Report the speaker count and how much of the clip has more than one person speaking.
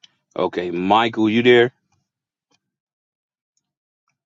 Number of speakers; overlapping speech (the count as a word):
one, no overlap